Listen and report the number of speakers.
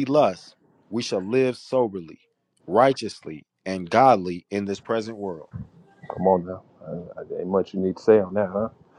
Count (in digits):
2